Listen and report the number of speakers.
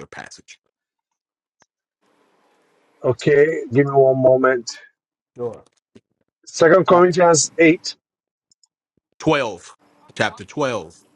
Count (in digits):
2